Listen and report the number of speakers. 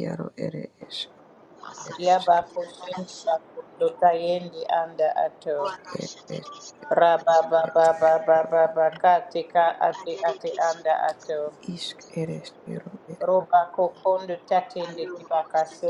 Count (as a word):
three